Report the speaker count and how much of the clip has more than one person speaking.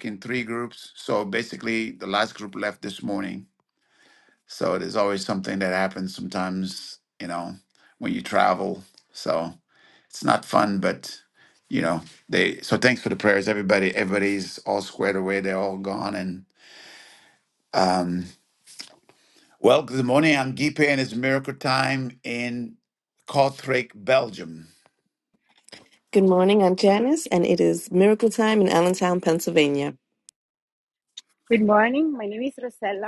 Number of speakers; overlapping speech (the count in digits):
3, no overlap